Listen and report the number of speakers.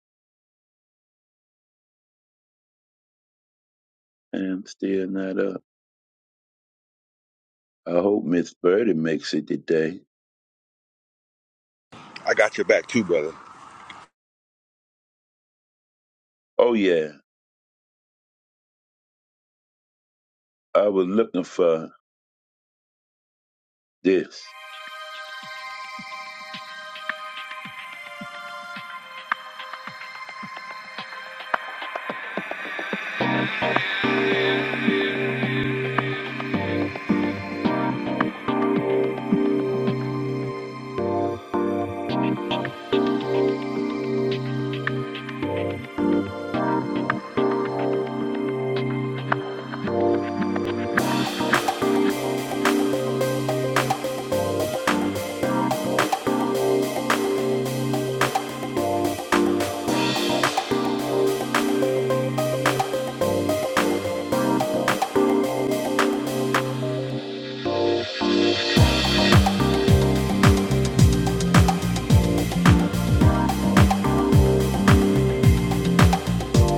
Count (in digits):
2